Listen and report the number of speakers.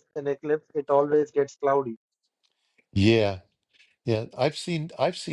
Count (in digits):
2